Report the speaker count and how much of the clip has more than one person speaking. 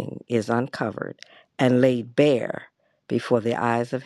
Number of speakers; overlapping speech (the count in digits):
1, no overlap